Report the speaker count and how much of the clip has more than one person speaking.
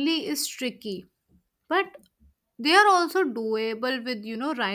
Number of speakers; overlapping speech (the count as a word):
one, no overlap